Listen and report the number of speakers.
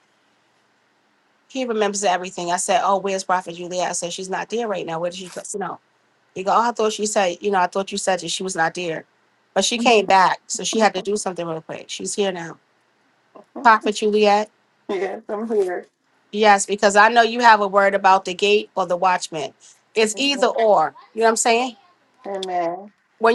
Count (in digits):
2